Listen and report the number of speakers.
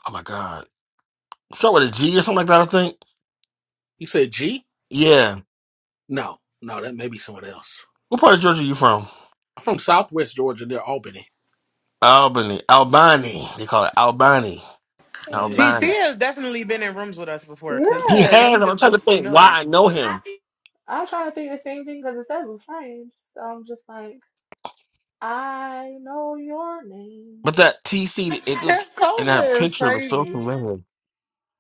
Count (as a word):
four